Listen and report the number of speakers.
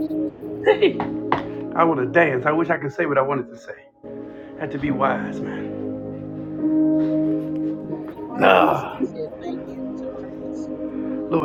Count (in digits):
2